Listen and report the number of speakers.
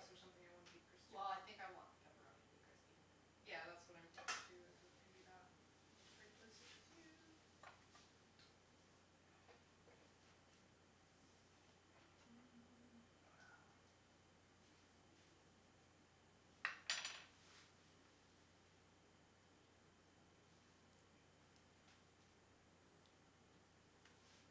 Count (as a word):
two